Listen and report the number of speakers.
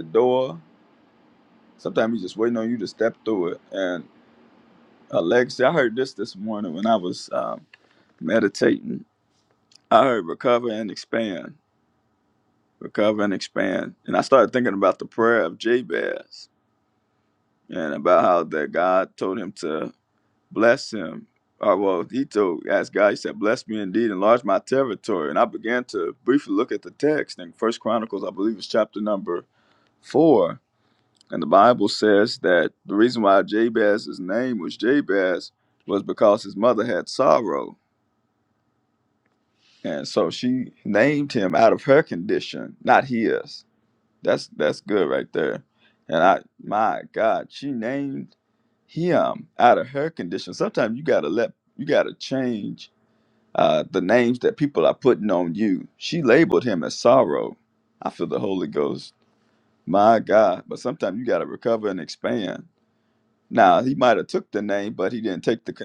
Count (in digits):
1